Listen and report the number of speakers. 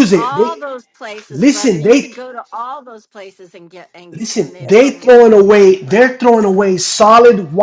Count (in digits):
2